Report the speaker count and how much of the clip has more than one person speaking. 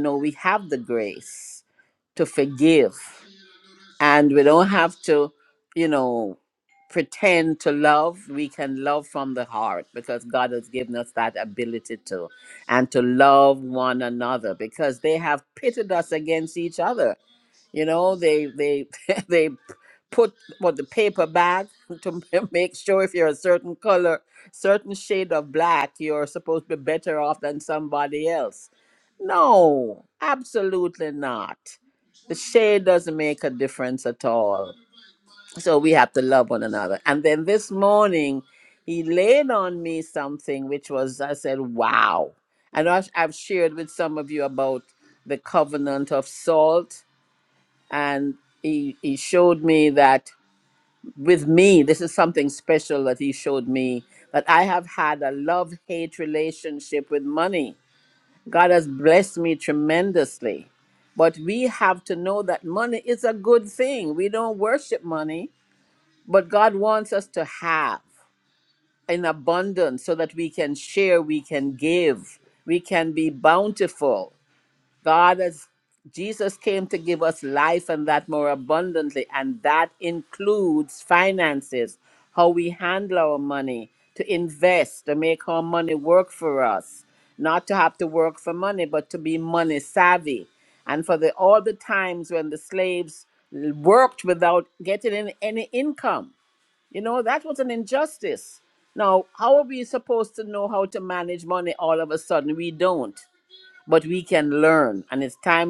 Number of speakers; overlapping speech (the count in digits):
1, no overlap